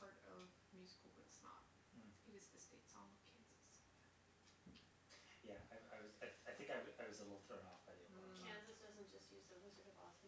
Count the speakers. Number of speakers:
3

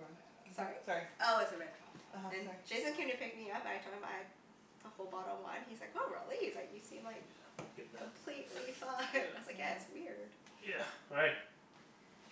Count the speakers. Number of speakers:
3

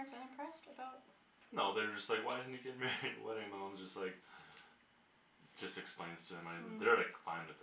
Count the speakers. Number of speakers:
2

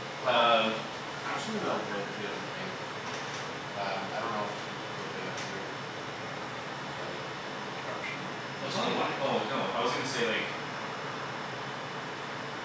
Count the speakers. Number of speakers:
2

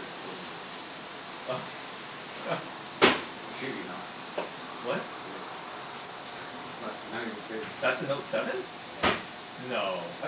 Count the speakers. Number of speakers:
2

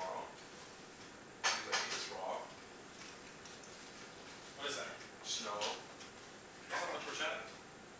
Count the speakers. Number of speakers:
2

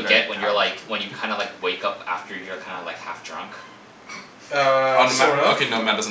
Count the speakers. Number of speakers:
3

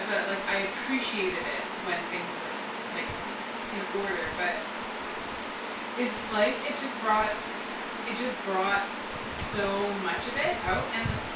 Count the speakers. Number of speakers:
1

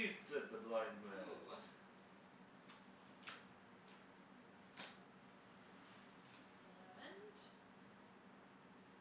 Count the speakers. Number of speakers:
2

